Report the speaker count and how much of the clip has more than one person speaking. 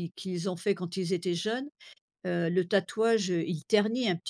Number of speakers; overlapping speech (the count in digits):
1, no overlap